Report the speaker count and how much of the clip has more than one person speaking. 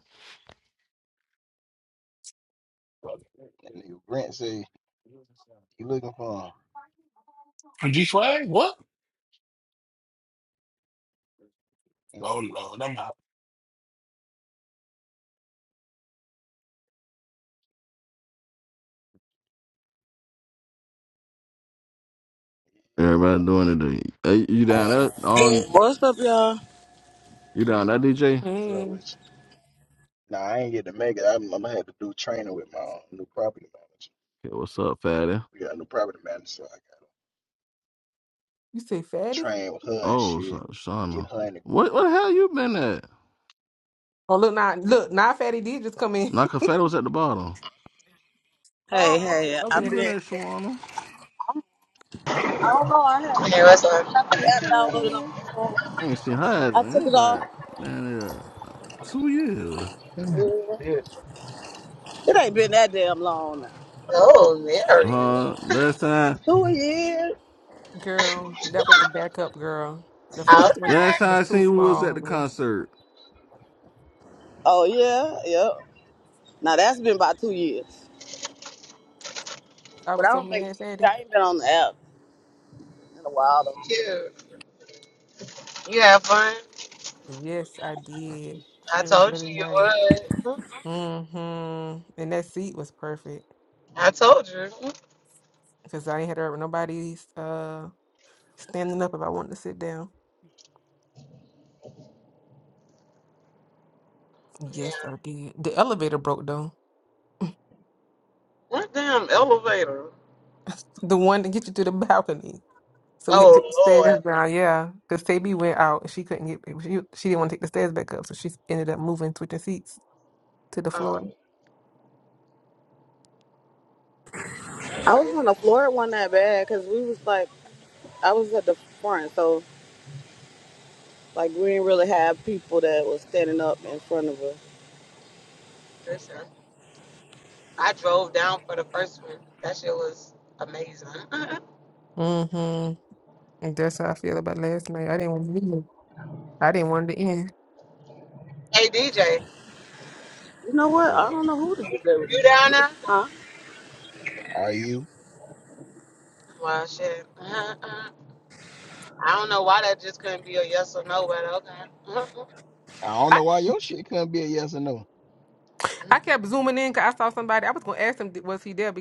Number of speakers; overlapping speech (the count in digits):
6, about 6%